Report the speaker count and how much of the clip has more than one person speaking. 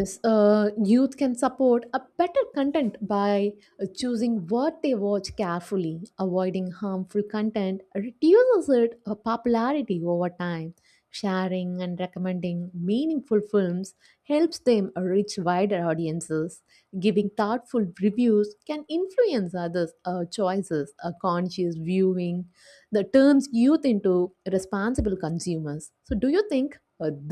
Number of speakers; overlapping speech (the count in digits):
1, no overlap